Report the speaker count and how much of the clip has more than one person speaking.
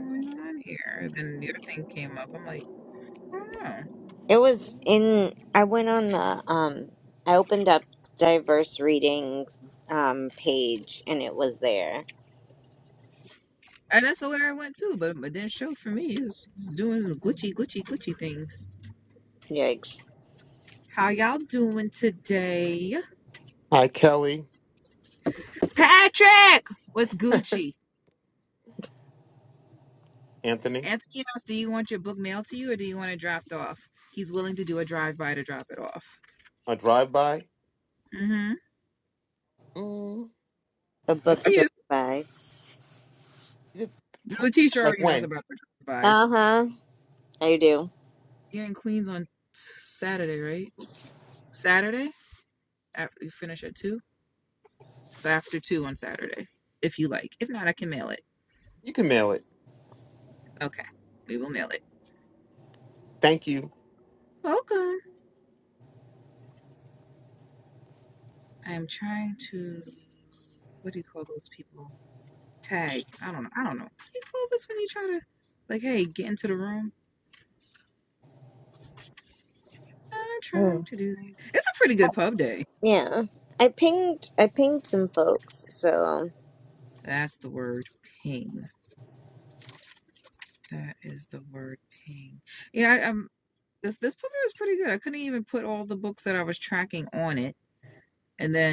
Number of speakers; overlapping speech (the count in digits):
3, about 1%